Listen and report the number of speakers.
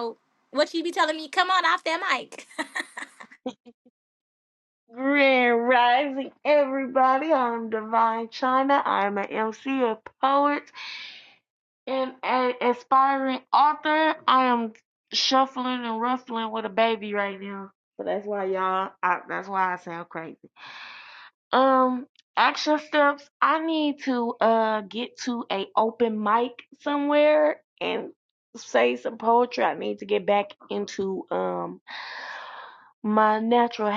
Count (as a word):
two